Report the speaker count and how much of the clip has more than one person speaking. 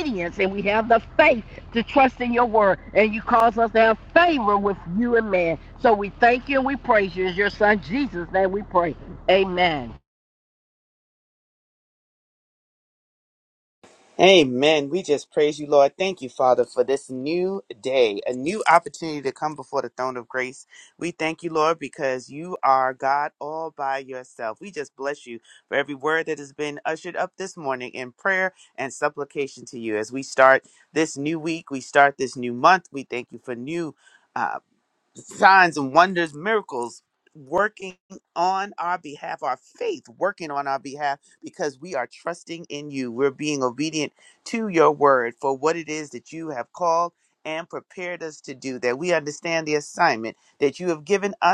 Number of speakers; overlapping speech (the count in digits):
2, no overlap